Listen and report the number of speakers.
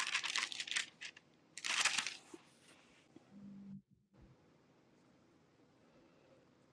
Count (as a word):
zero